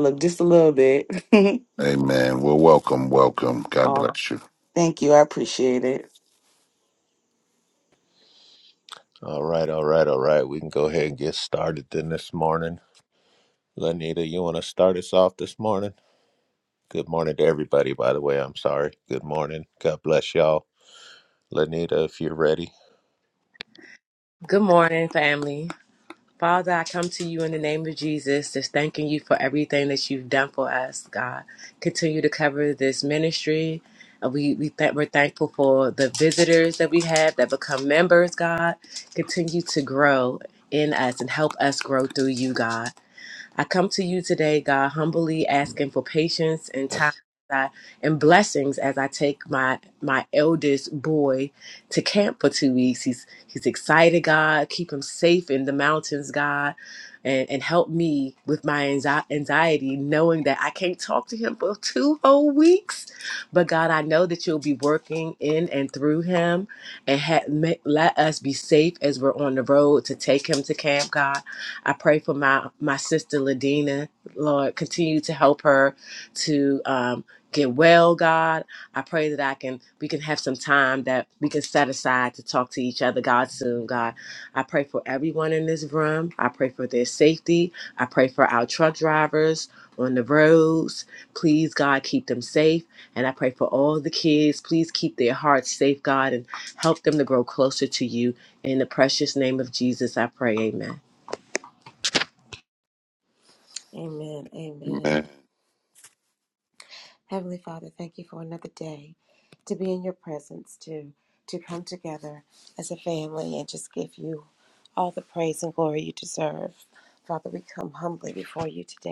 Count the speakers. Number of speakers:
five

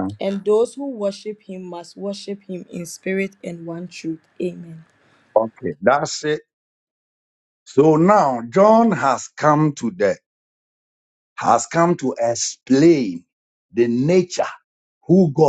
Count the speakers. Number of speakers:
two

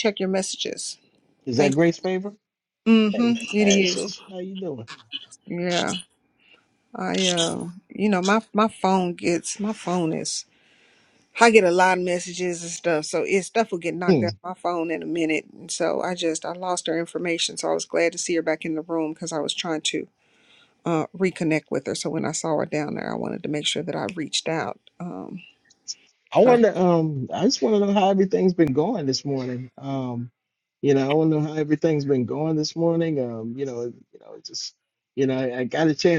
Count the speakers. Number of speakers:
two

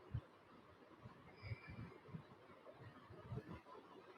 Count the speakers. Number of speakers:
zero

